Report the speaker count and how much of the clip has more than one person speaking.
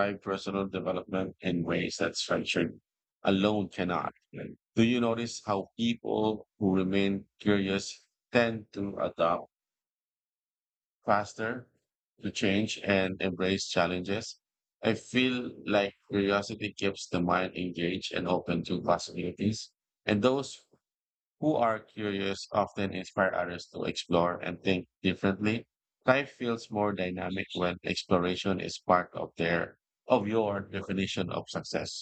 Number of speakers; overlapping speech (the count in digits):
1, no overlap